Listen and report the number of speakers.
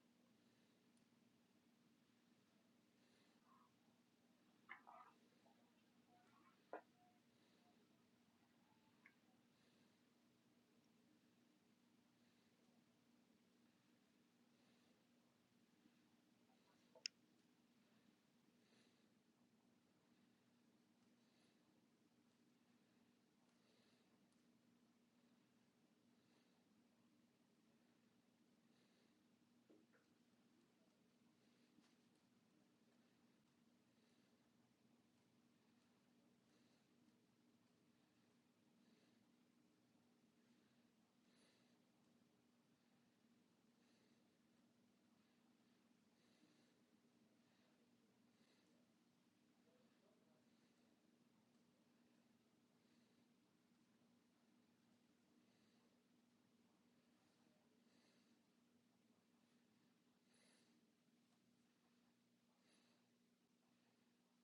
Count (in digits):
0